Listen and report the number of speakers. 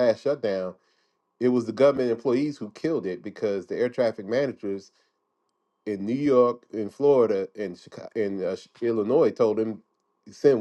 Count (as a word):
one